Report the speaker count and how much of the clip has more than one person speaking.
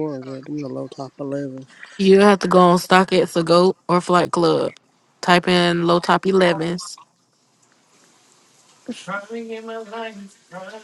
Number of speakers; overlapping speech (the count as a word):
three, no overlap